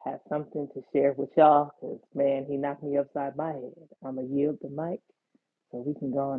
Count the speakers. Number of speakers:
1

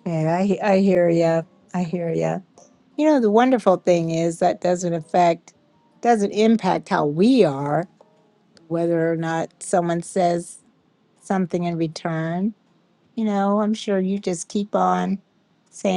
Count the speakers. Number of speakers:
1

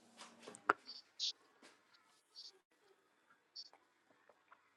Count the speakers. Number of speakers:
0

